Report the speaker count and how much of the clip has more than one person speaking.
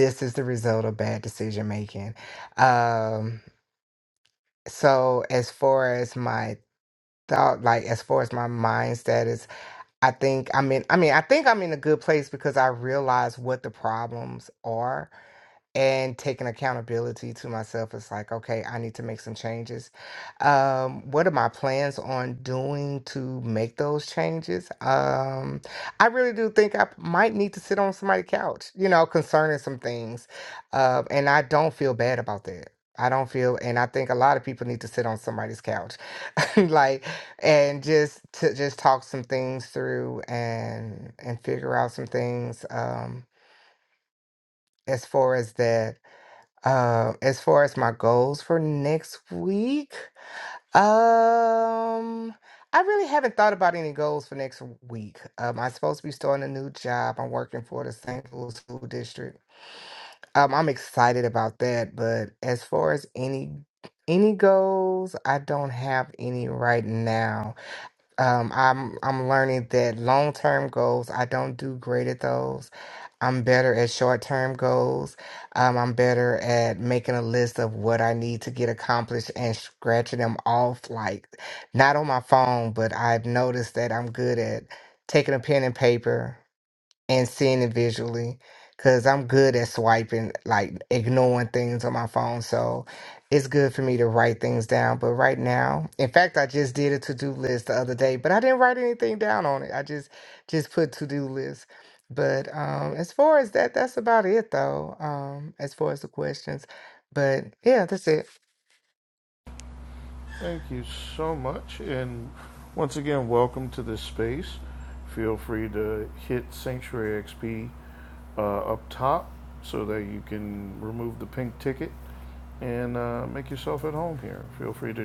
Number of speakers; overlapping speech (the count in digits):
2, no overlap